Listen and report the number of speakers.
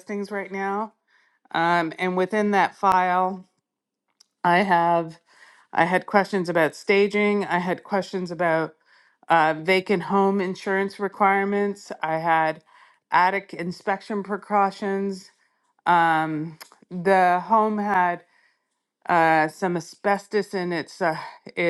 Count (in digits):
1